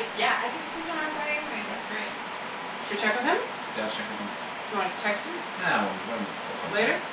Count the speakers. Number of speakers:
three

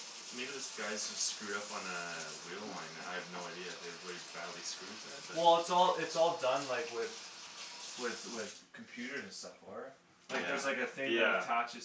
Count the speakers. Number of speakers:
two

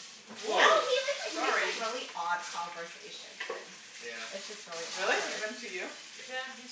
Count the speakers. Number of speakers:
three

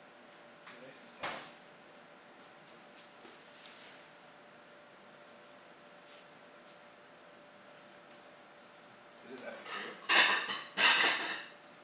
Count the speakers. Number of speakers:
one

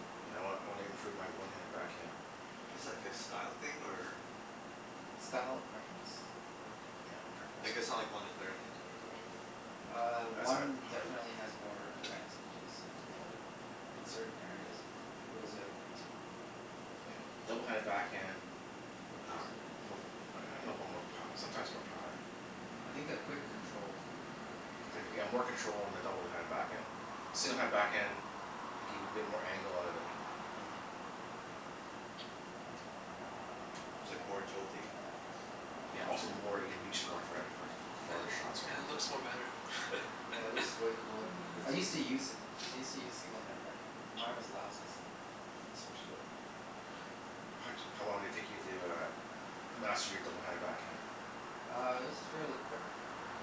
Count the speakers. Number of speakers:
four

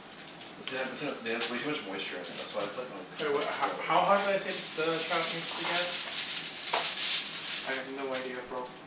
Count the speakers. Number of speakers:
three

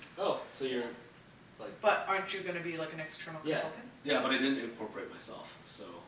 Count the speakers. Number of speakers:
three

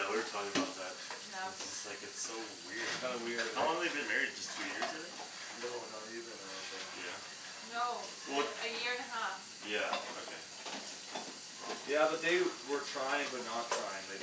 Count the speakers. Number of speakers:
three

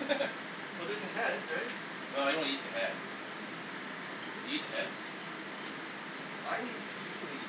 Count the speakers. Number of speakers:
two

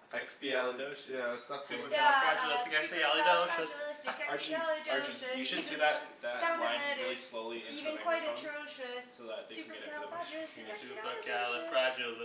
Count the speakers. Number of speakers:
four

